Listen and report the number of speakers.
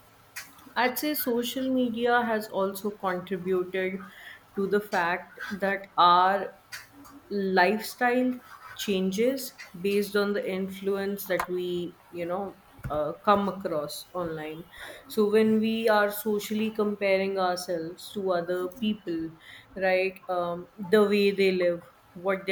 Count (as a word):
one